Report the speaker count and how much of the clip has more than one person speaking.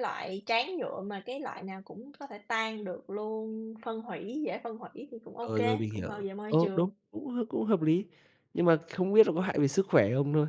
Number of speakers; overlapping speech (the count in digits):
2, about 7%